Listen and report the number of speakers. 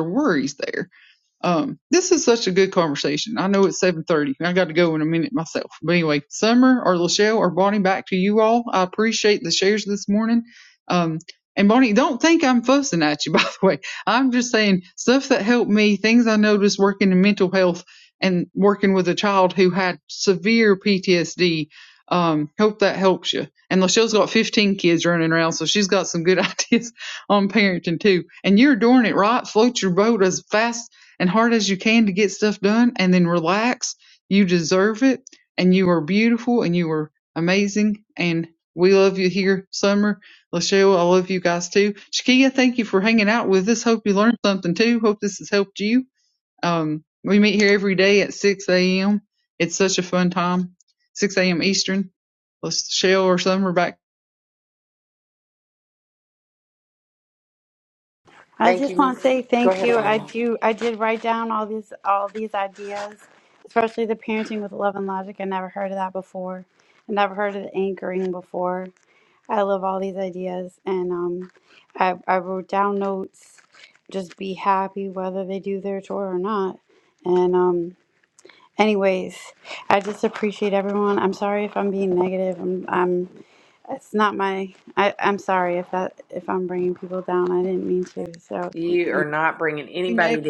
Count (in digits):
3